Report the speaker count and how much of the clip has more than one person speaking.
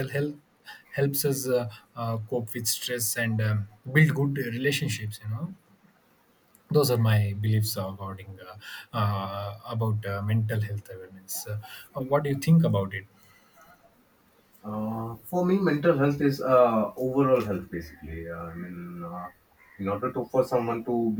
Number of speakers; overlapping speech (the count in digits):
2, no overlap